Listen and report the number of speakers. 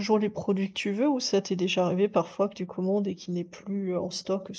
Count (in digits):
1